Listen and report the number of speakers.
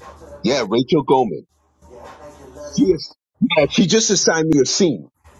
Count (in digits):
1